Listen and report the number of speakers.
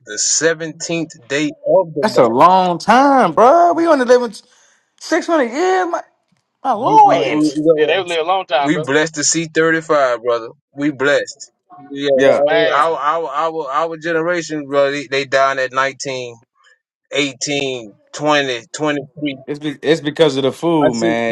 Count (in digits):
3